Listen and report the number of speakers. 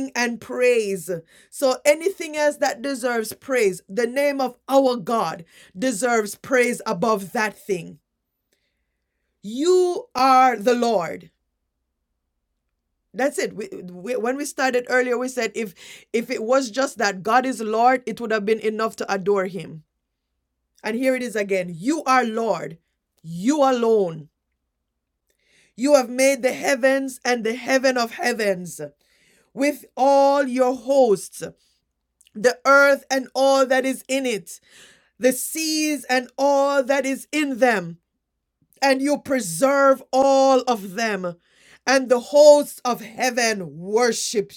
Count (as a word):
one